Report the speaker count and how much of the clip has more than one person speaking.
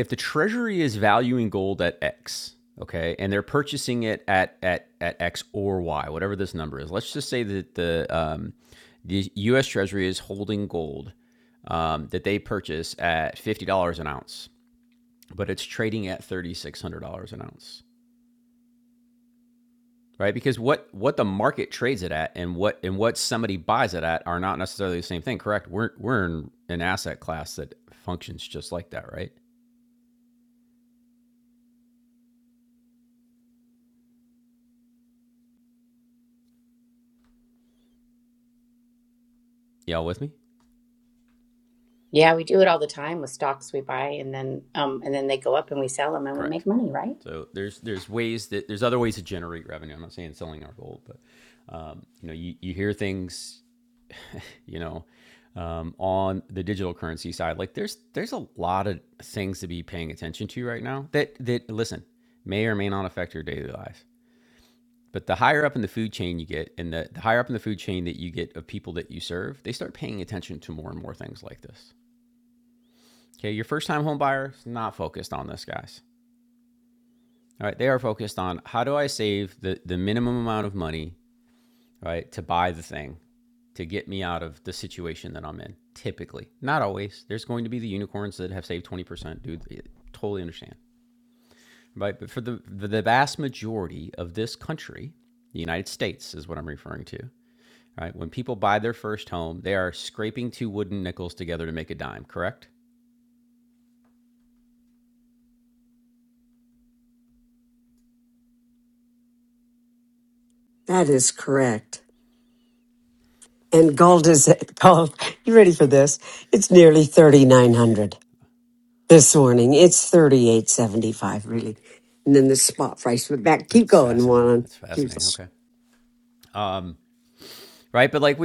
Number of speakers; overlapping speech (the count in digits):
3, about 1%